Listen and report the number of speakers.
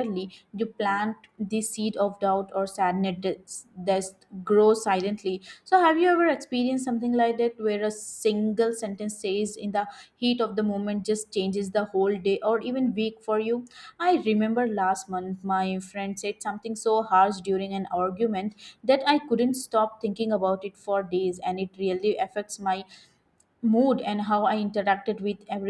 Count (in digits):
1